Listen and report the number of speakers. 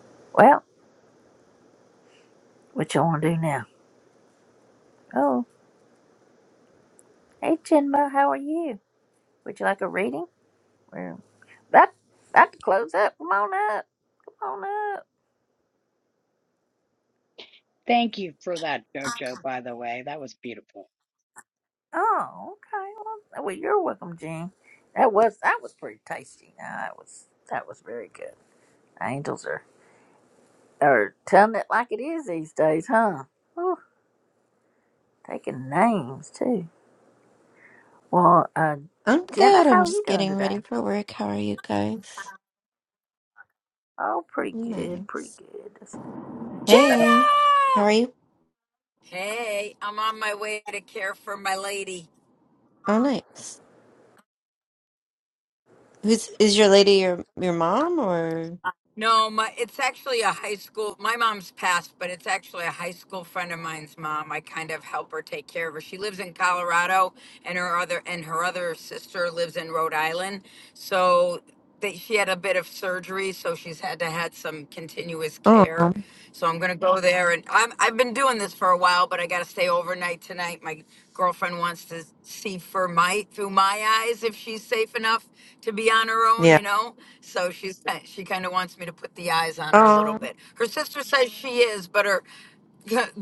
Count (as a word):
four